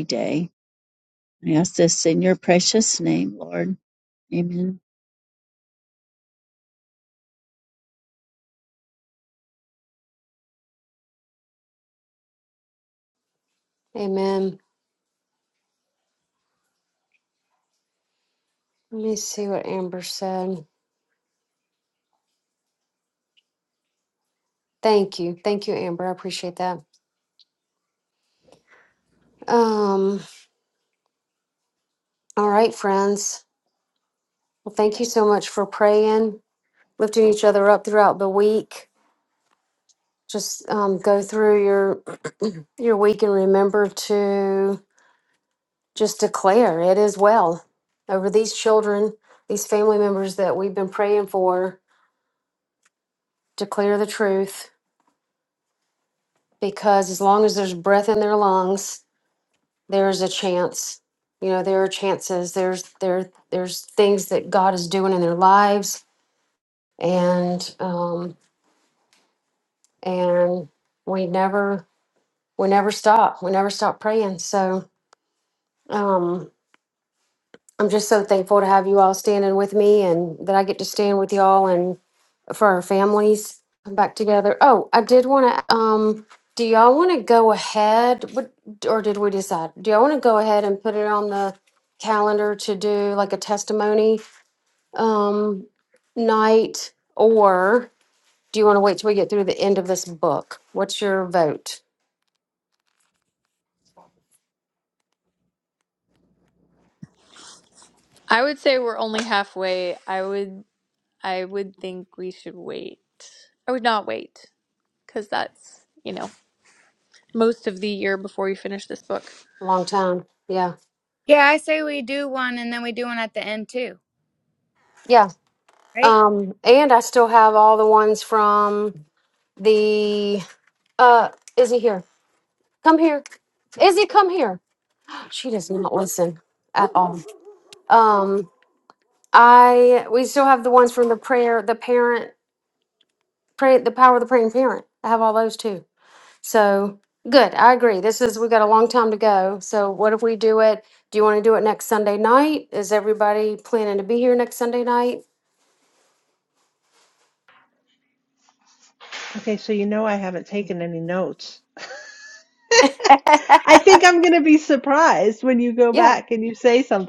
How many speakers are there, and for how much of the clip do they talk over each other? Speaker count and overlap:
5, under 1%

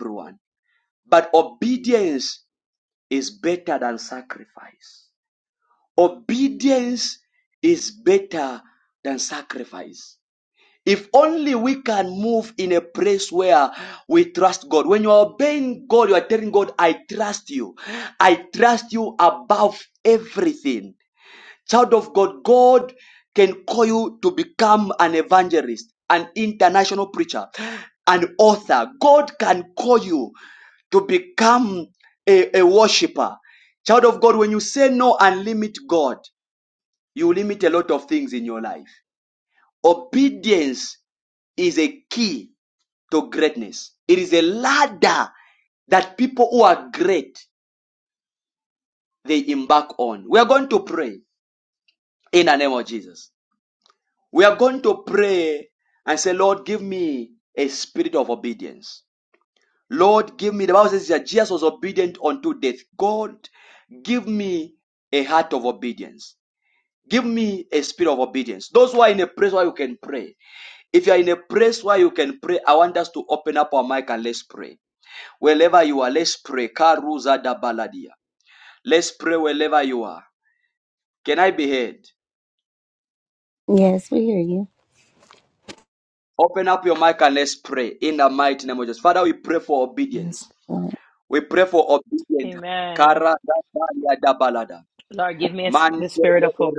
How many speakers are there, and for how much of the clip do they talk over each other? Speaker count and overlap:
3, about 2%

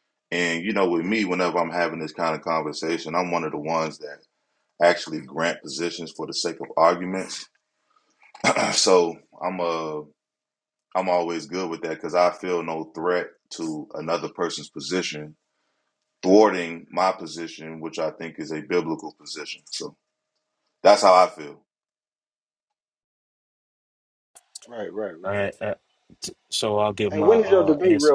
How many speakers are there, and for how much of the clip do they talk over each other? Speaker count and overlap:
3, about 4%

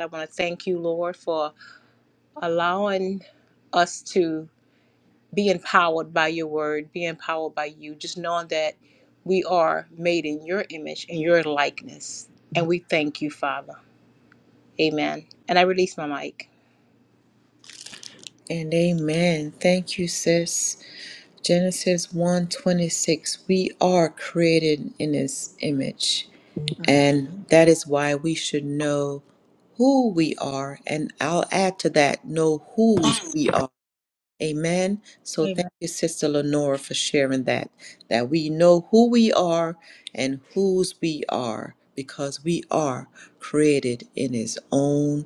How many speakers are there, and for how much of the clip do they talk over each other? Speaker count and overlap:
2, about 1%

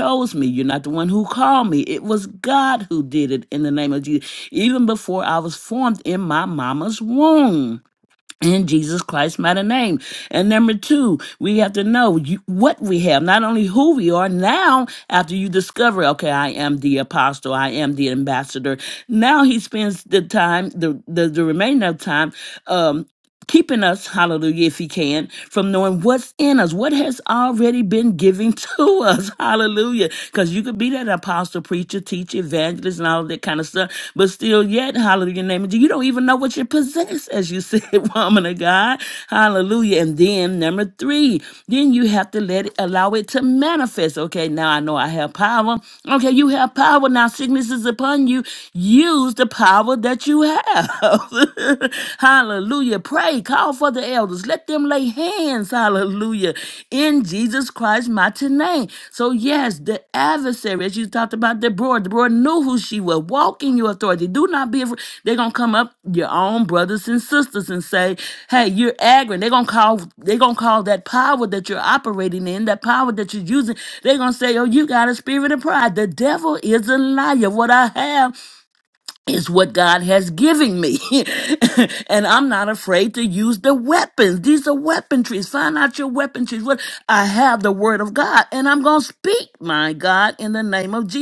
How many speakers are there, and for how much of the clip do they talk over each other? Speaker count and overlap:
1, no overlap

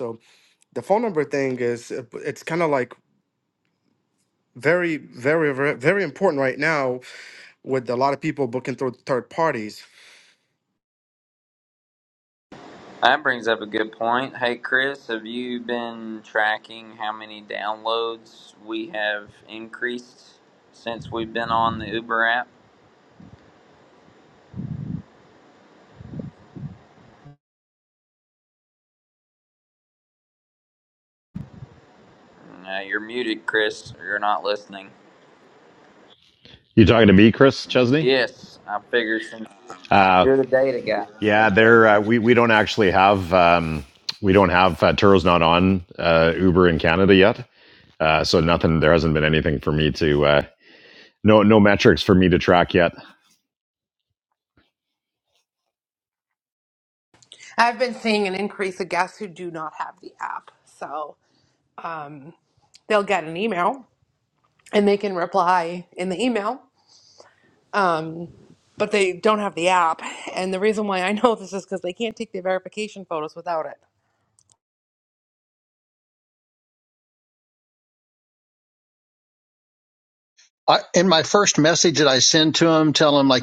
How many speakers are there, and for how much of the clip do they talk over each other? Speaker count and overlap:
5, under 1%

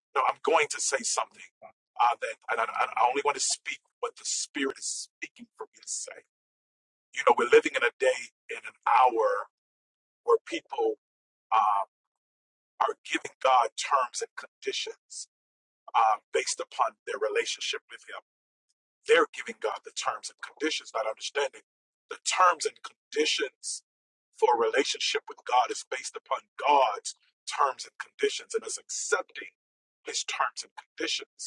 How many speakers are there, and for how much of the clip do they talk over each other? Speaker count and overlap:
1, no overlap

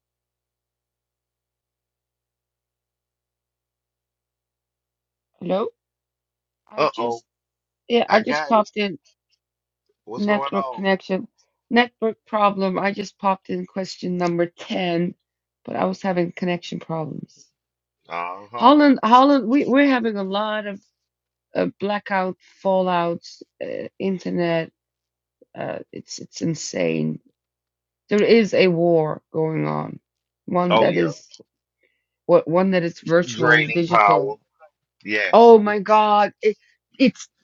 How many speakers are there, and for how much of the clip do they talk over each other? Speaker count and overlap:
2, about 8%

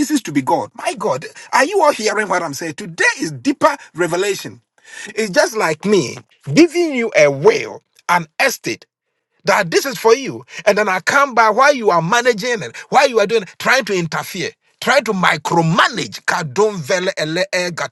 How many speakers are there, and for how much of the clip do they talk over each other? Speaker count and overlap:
1, no overlap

